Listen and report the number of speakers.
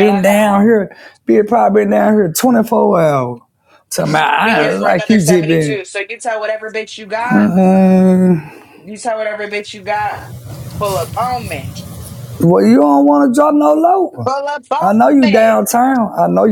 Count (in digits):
2